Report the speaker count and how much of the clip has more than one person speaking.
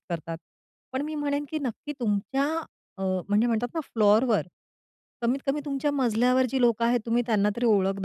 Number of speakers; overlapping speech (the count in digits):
1, no overlap